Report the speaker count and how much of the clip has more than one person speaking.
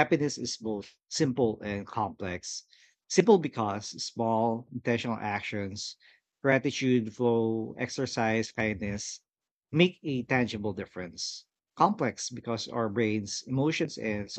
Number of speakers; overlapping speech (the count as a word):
one, no overlap